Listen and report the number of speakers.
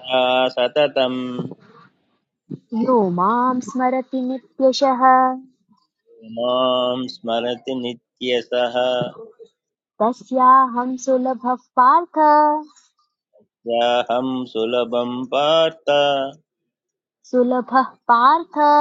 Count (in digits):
2